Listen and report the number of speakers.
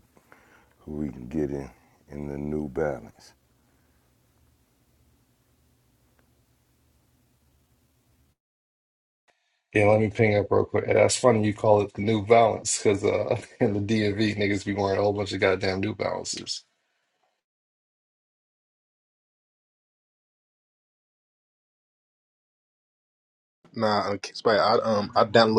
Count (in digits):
3